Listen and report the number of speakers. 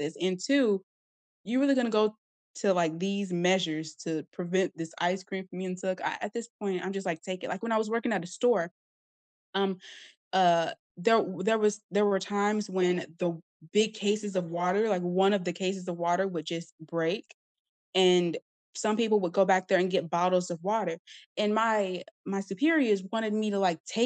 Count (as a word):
one